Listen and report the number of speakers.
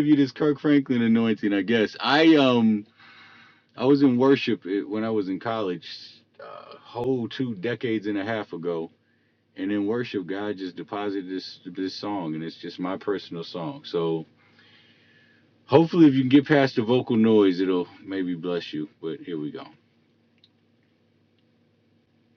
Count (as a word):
one